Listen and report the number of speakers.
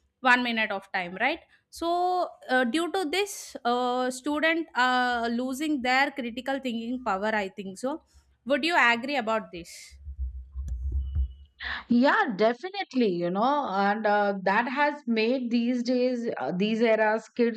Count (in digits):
2